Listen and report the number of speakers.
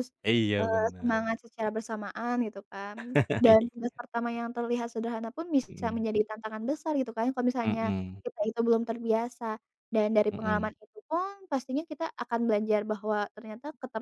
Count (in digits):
2